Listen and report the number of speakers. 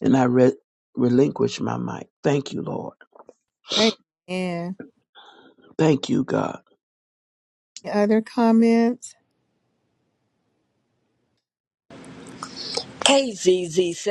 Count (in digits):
3